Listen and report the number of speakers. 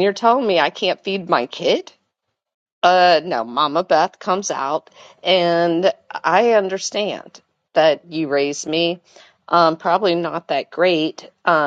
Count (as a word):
one